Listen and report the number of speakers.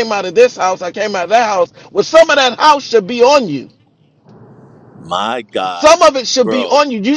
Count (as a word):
two